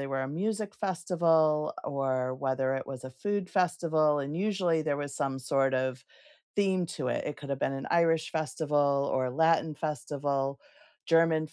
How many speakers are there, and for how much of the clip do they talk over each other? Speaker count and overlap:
one, no overlap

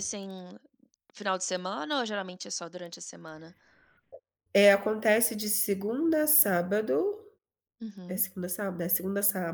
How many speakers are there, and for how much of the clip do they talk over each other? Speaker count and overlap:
two, about 1%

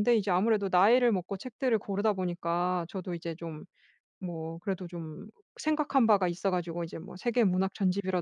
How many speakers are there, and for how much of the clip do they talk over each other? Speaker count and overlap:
one, no overlap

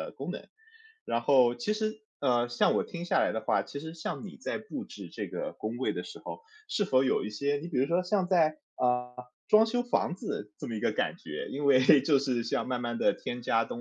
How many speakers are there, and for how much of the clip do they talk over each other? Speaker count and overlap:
one, no overlap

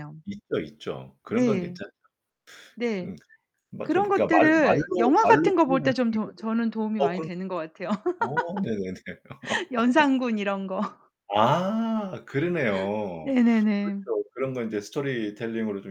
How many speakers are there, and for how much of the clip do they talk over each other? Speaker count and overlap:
two, about 23%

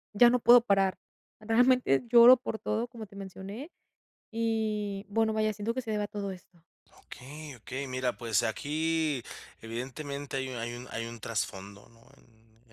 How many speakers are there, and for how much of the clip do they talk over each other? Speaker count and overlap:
two, no overlap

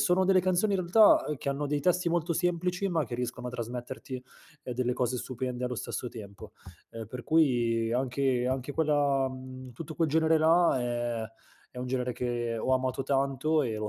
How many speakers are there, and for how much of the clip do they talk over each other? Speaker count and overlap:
one, no overlap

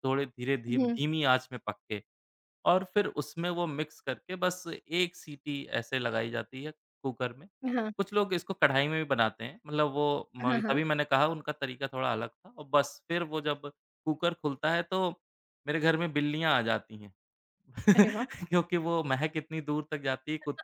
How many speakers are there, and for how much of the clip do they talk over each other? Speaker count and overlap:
two, about 3%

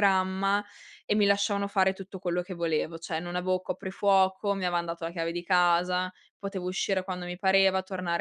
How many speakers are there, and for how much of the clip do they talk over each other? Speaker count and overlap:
one, no overlap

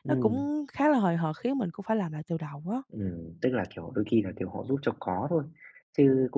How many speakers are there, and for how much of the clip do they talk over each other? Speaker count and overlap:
two, about 5%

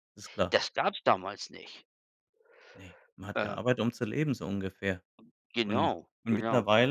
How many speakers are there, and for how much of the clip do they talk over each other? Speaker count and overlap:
two, about 13%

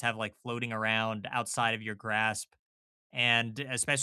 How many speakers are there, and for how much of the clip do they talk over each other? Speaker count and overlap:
one, no overlap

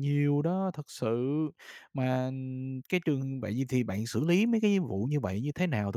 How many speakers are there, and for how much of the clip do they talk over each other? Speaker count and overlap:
one, no overlap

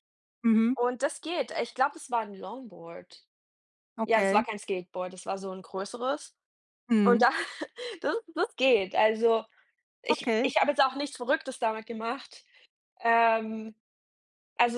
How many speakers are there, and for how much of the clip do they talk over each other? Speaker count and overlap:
two, about 7%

